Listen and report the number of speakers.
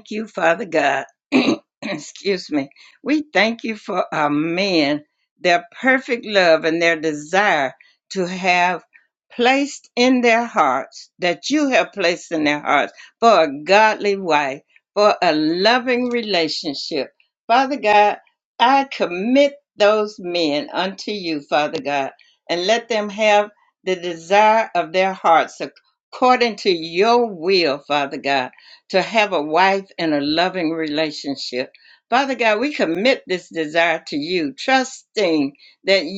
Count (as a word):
one